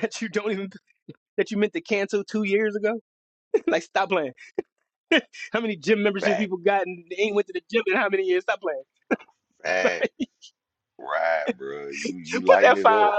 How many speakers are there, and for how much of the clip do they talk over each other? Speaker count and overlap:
2, about 10%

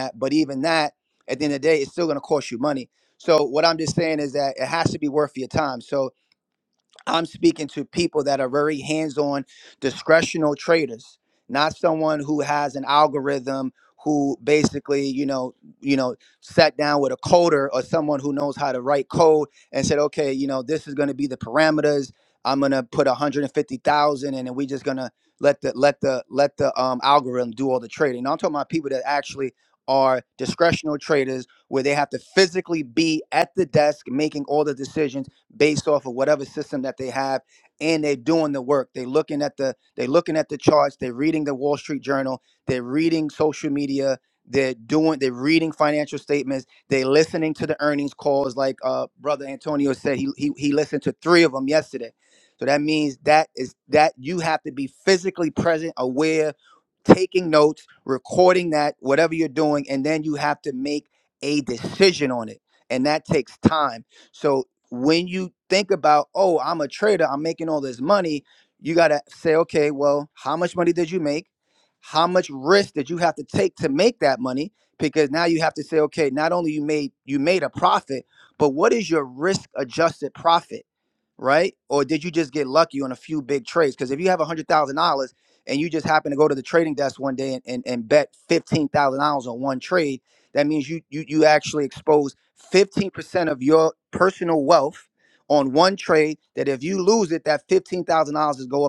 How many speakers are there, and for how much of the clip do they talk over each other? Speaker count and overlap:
1, no overlap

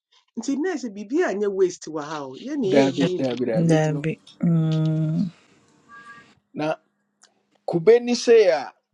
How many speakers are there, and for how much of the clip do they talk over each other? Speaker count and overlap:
3, about 16%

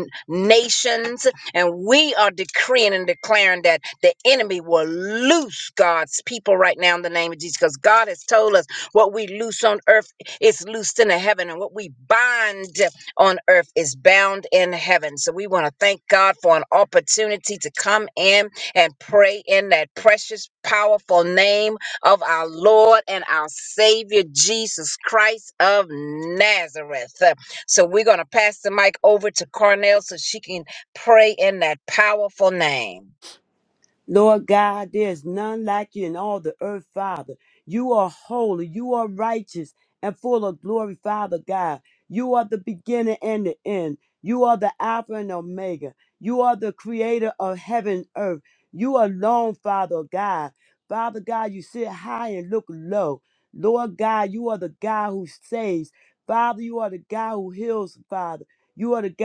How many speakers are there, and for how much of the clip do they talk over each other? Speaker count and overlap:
2, no overlap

